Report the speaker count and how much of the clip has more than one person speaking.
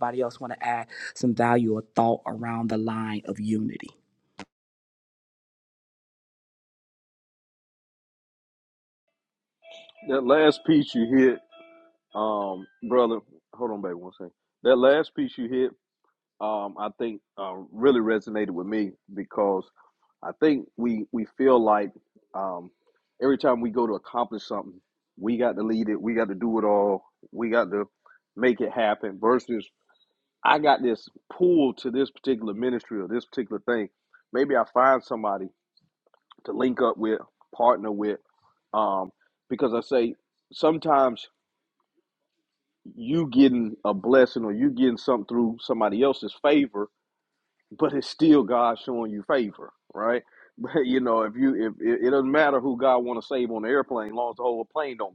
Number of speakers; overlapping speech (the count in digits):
2, no overlap